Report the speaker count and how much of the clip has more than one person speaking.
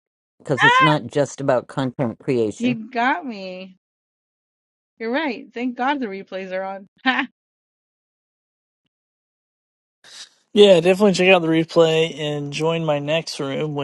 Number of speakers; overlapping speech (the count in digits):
3, about 4%